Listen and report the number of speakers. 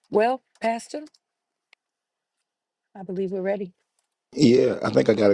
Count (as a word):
two